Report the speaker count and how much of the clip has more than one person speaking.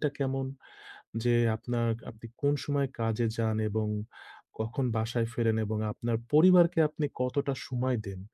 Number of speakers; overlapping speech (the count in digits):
1, no overlap